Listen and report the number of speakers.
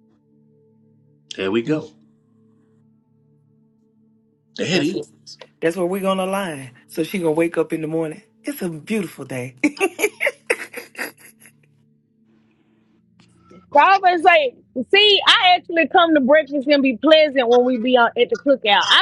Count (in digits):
3